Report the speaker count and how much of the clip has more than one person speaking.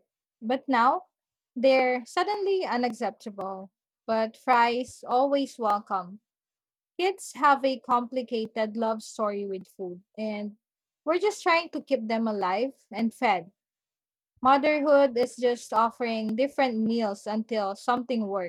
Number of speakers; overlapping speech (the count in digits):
1, no overlap